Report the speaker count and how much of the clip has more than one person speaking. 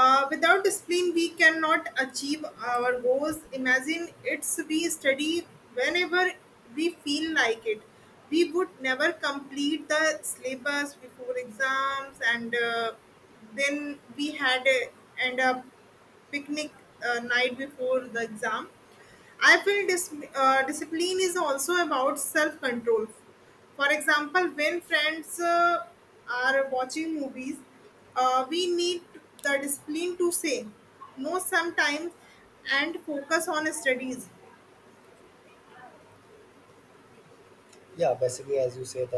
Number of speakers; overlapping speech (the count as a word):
two, no overlap